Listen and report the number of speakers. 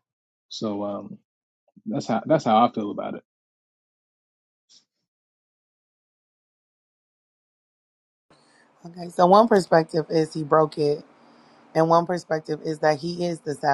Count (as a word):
two